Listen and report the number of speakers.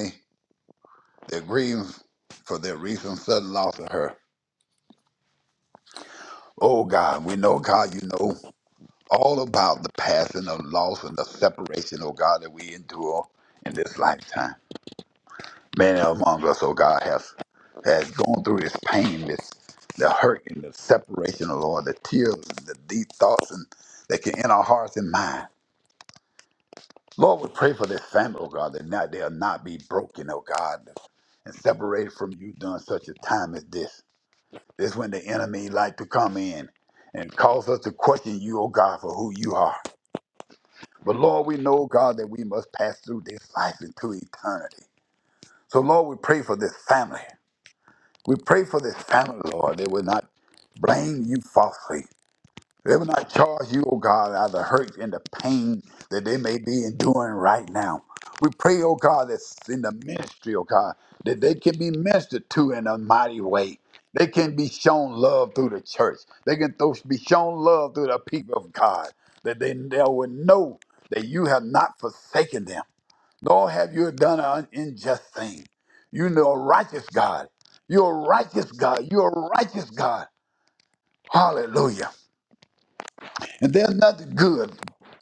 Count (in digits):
1